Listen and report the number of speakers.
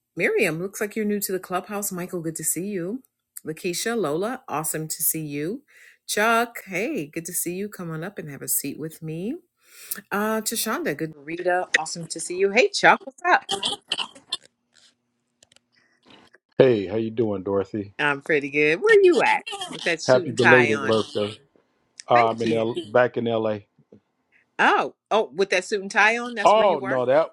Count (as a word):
two